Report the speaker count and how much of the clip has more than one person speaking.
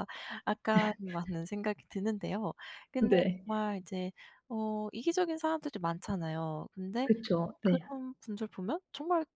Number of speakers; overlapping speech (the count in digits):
2, about 6%